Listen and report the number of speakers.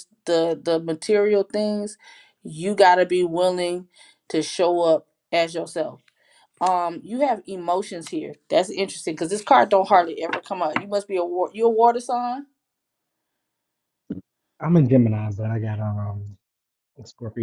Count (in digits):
2